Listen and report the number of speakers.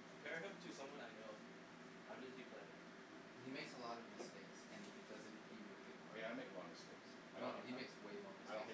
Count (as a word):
three